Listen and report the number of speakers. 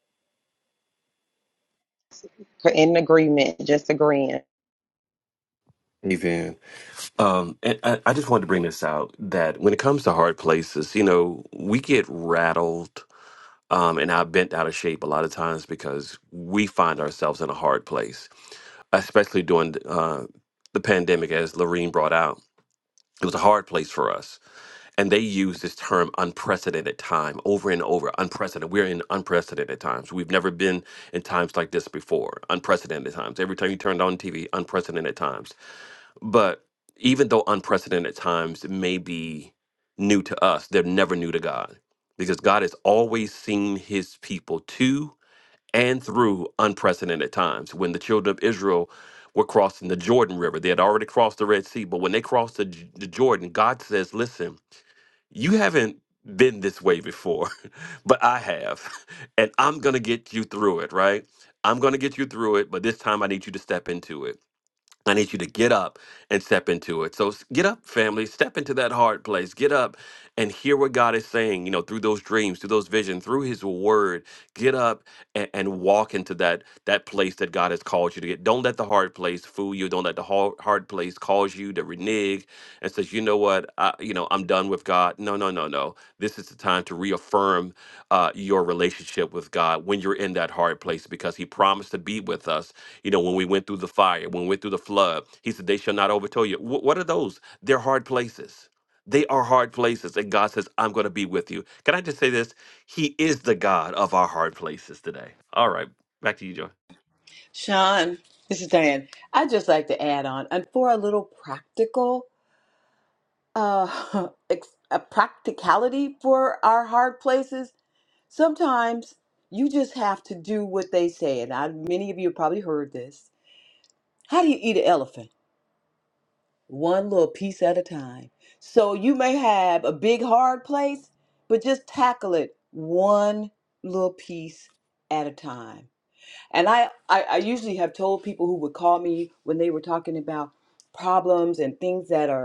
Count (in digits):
3